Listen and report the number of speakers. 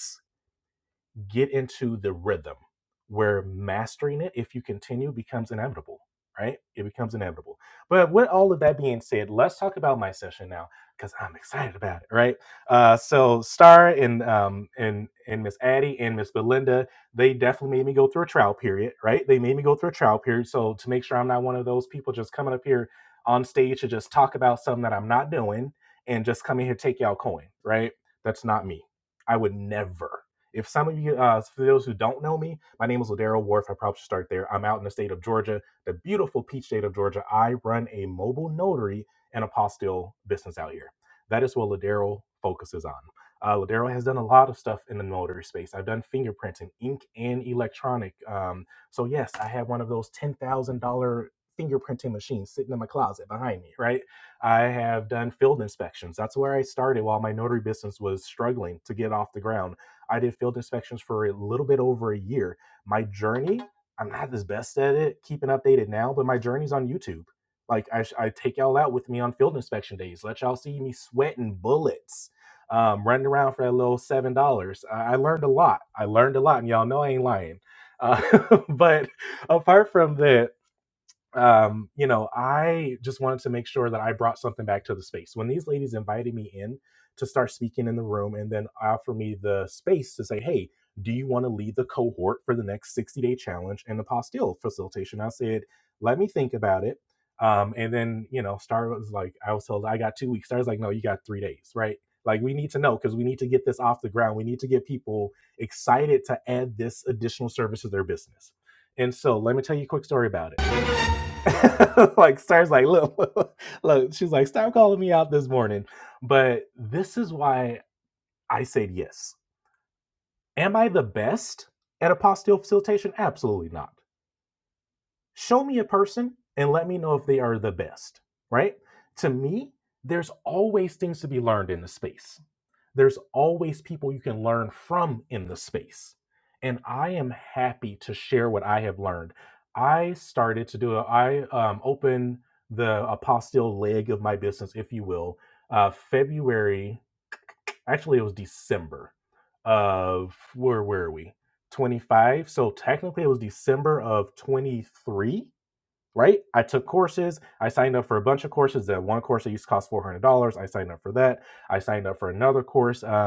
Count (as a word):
one